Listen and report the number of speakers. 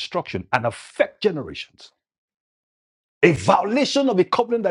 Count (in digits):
1